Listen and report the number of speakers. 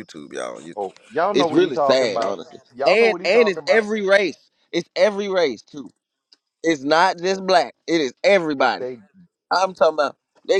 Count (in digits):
2